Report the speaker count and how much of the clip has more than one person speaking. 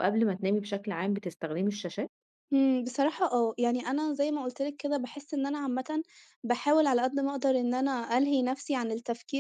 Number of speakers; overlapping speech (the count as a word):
two, no overlap